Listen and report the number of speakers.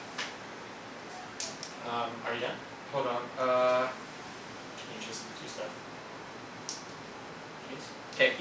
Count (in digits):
2